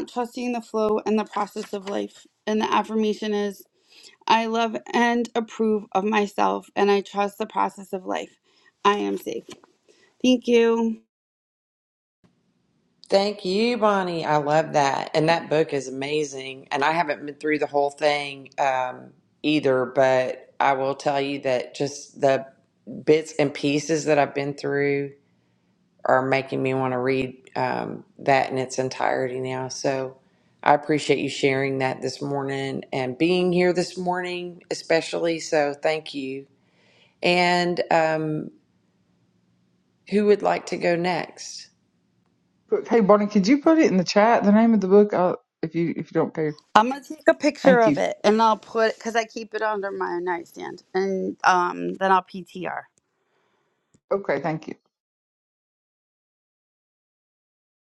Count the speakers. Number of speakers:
three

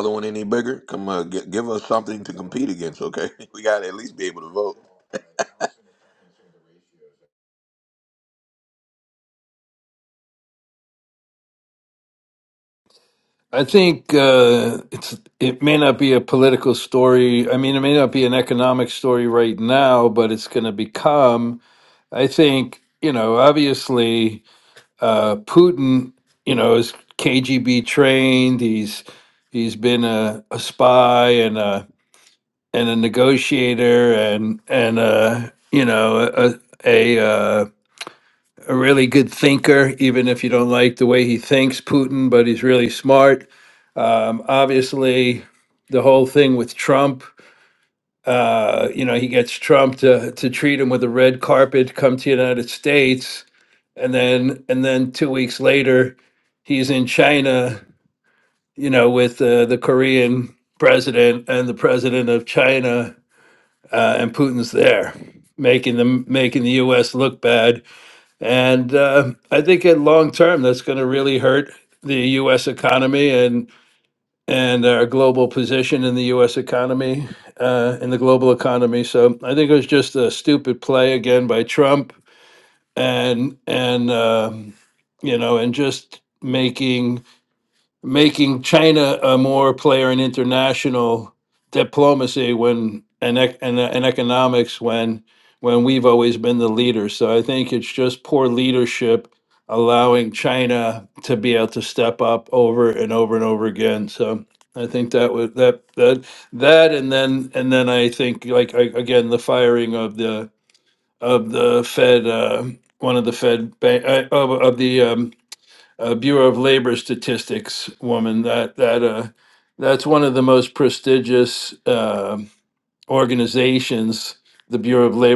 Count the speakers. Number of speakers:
two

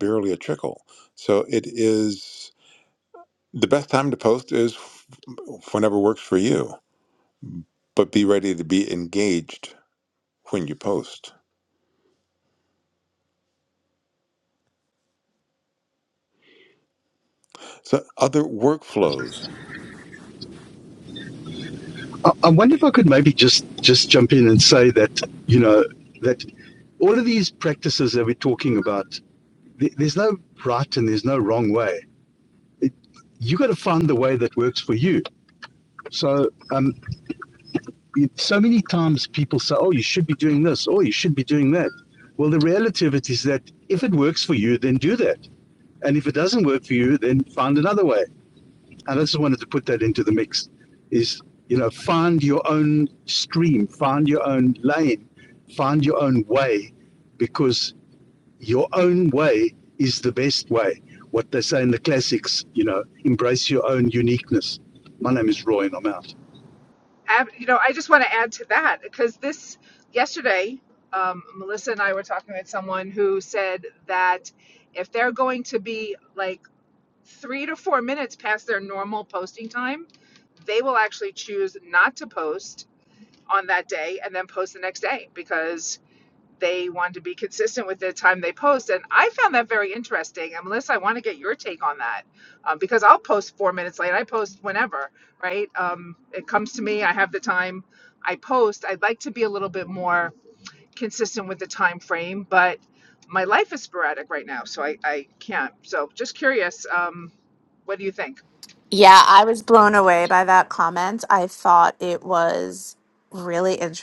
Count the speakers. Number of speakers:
four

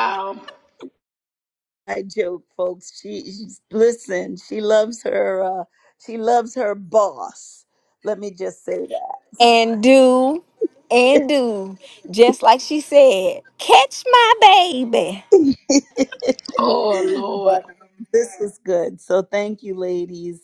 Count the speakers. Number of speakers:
three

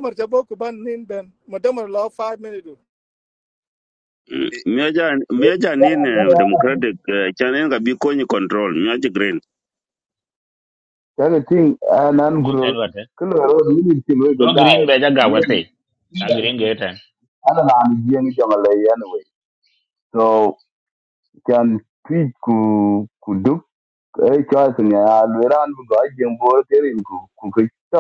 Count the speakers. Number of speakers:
four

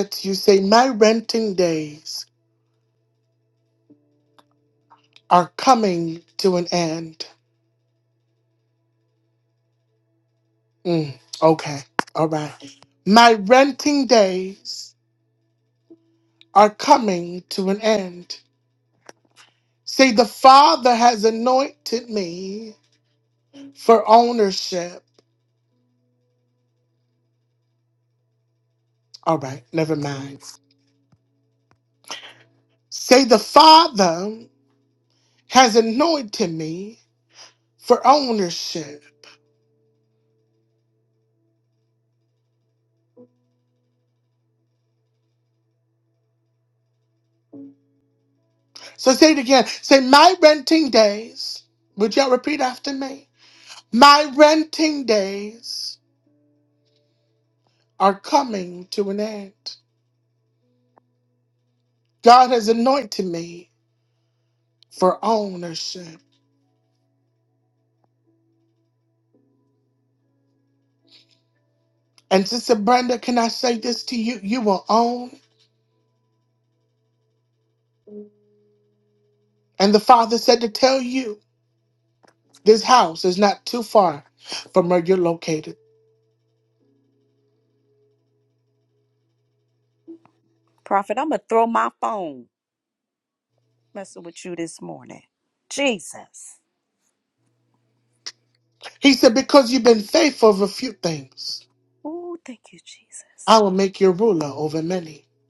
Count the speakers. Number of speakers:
two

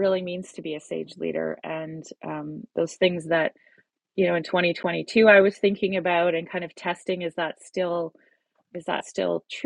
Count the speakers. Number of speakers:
one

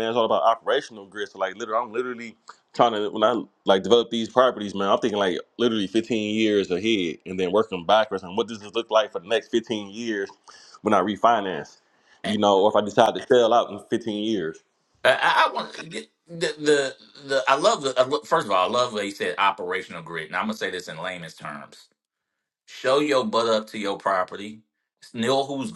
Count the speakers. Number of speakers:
two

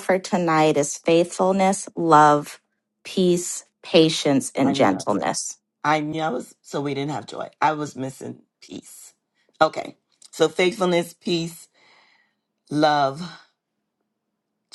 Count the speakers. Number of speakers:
two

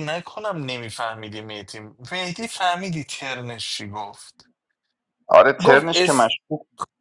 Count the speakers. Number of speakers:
two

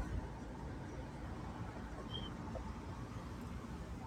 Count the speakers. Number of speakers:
zero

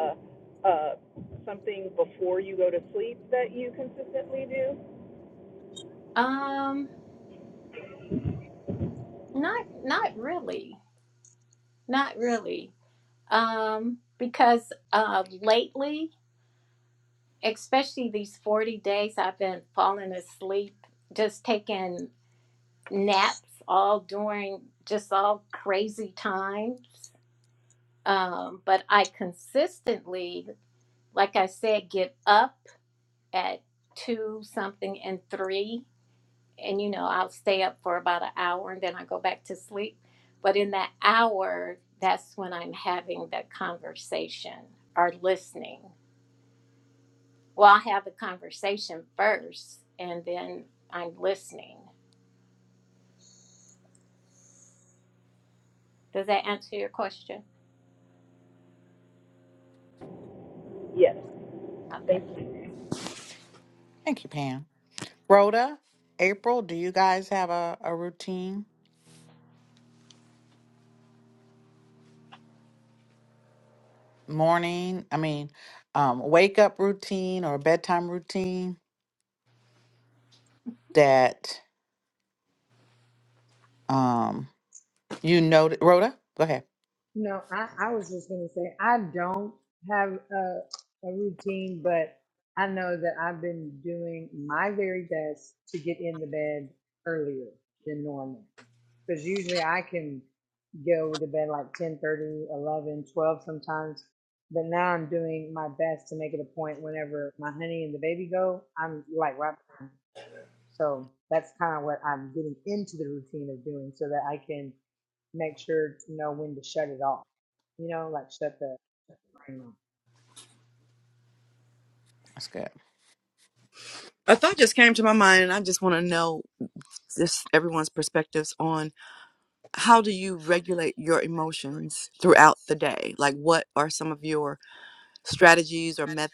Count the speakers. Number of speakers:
five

